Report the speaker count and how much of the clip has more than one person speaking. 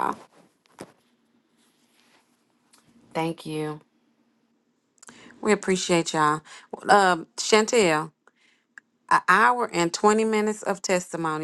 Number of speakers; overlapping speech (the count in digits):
1, no overlap